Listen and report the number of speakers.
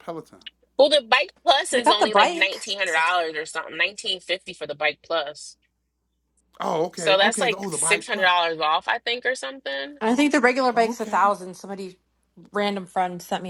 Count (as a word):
three